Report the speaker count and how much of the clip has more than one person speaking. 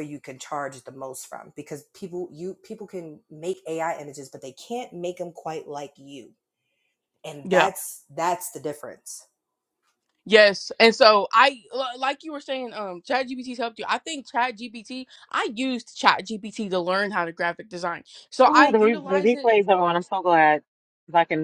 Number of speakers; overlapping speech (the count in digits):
3, about 6%